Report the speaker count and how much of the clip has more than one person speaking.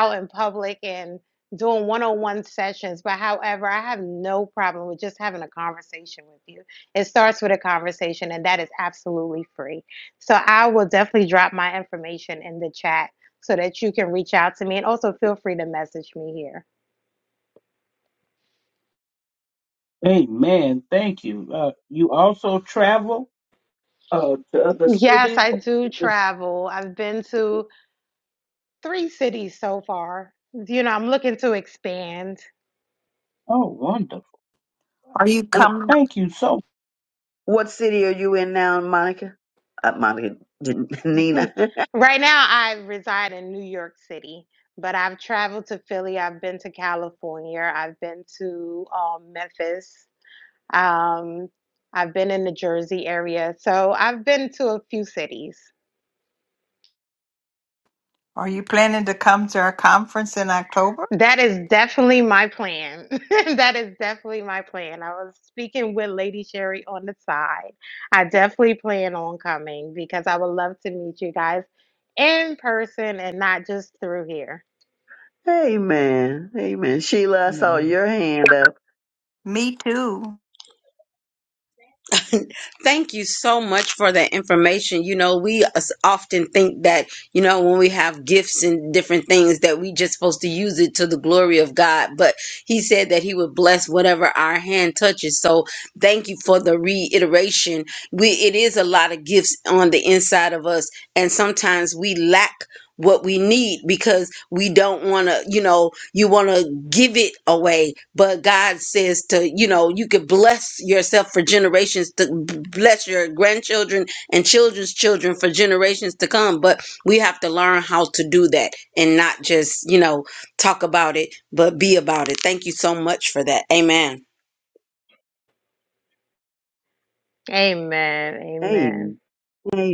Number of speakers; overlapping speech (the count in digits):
5, about 1%